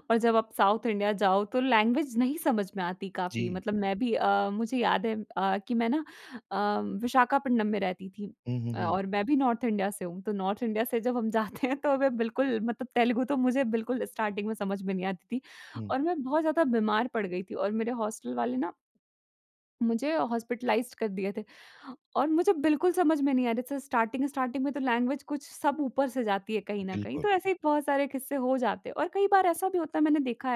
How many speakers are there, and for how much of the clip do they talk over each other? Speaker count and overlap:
2, about 3%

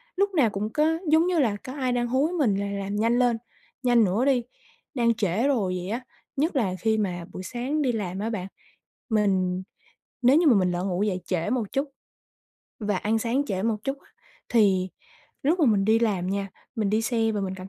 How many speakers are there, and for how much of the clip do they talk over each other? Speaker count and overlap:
1, no overlap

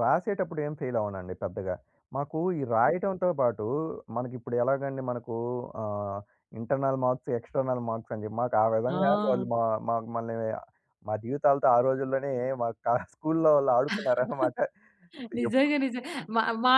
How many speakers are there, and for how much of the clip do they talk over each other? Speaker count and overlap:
2, about 7%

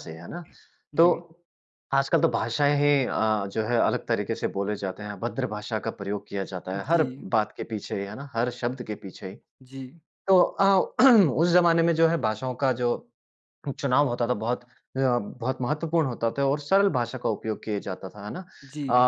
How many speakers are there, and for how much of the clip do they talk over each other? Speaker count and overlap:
2, about 4%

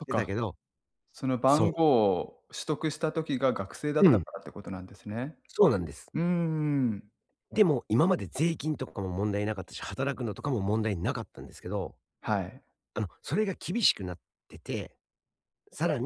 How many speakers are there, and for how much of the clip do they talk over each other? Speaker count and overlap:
2, about 5%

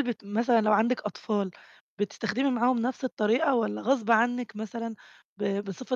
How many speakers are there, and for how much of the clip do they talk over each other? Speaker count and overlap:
1, no overlap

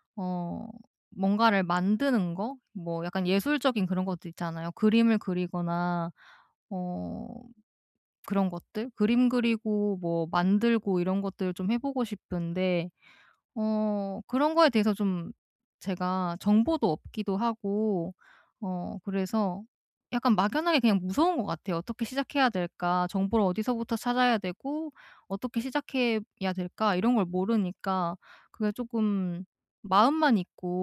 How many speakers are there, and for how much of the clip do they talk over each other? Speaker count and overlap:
1, no overlap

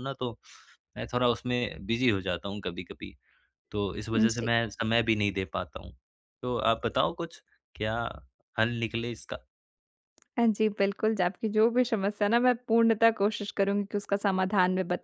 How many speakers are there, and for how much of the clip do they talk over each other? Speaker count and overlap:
2, about 3%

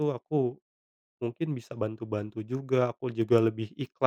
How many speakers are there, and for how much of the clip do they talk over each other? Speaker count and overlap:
1, no overlap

